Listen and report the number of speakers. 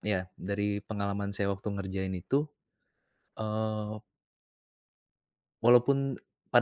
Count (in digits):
1